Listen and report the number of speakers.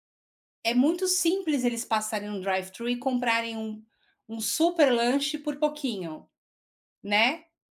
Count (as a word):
one